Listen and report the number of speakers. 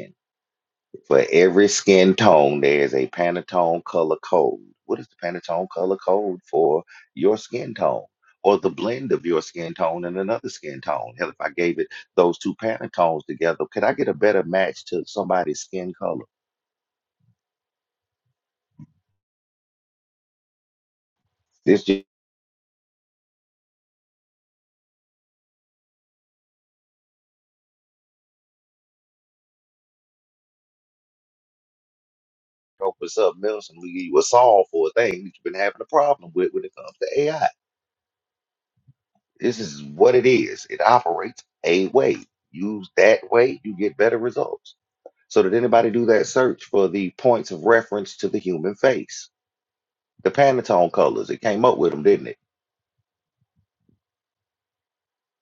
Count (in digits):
1